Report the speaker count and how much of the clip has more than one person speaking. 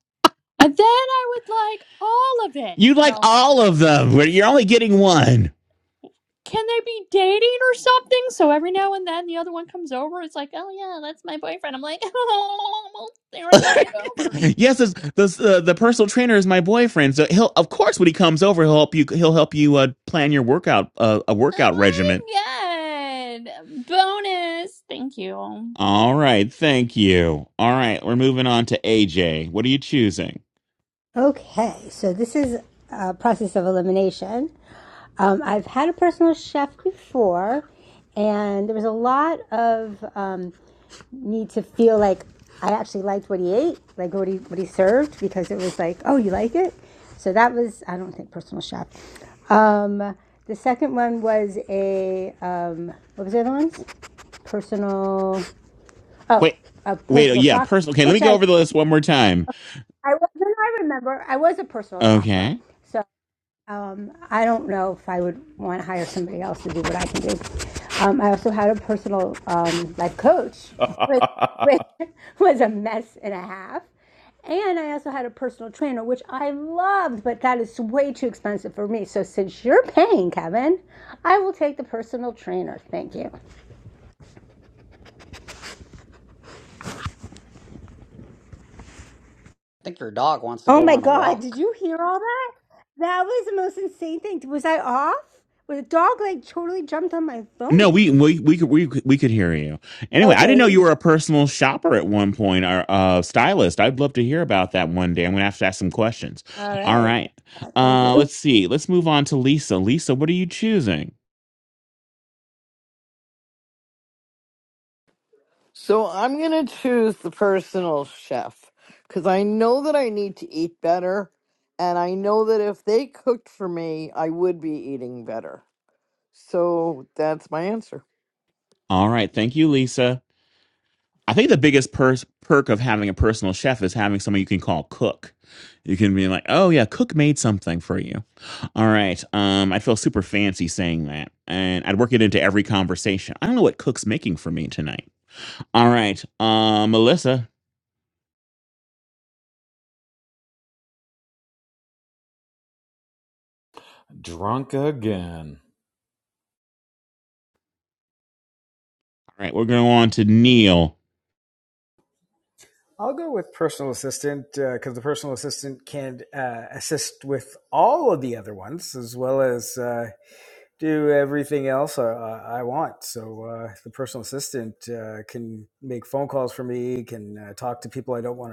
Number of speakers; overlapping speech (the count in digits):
7, about 3%